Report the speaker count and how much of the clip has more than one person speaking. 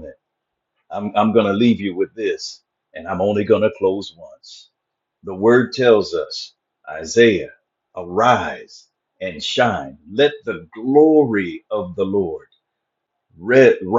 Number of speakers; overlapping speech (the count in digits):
1, no overlap